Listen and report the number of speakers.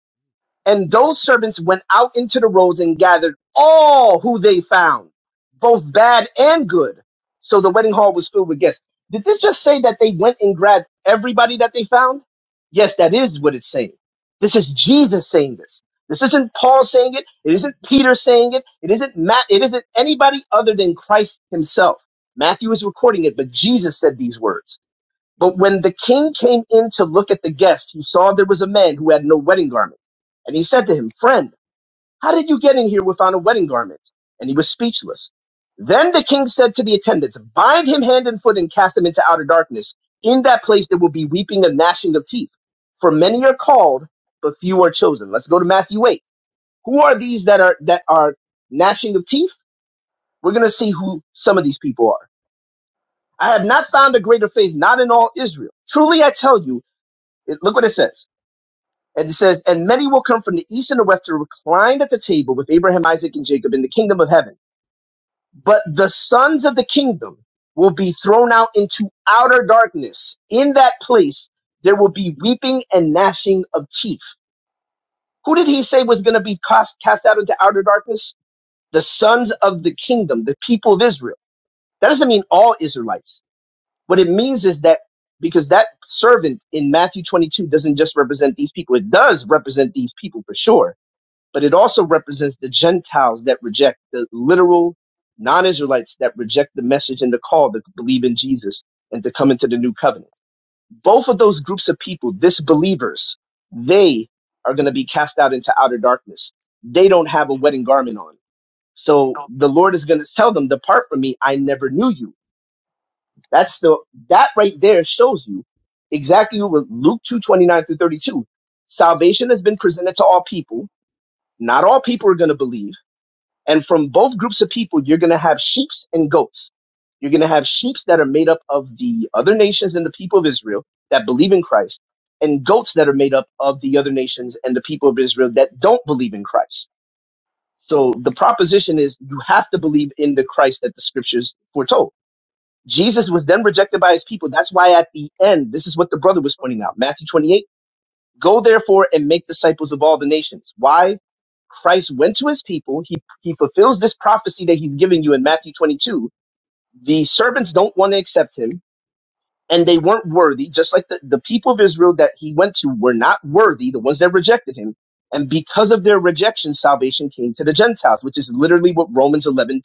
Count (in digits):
1